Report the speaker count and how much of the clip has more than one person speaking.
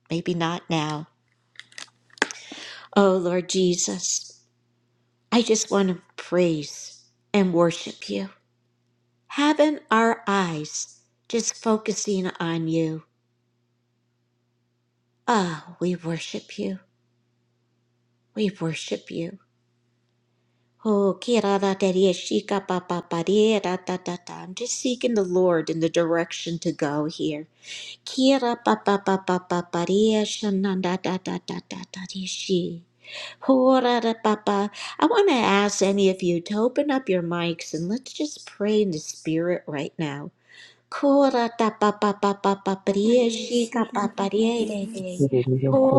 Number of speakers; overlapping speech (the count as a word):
one, no overlap